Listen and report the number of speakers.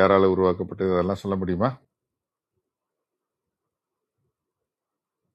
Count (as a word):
one